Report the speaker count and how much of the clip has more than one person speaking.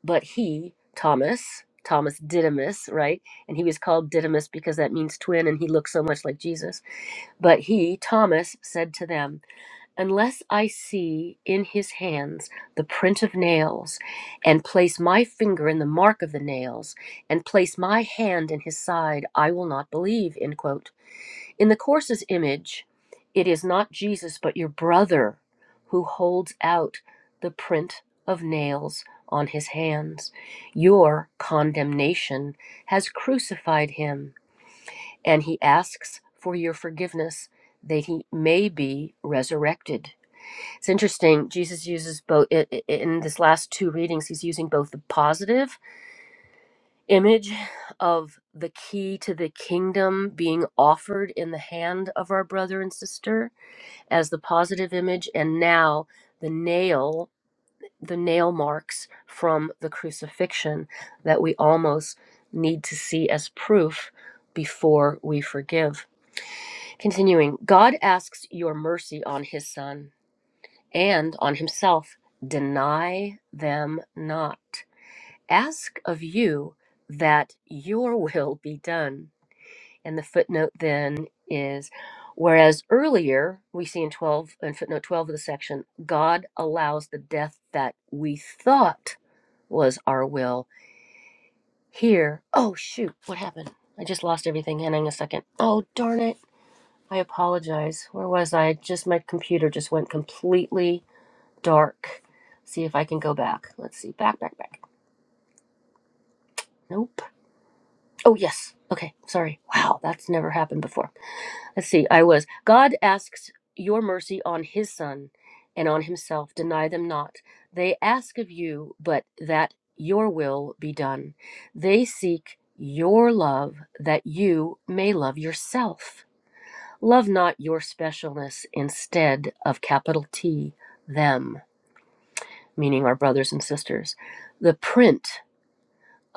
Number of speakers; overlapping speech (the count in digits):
1, no overlap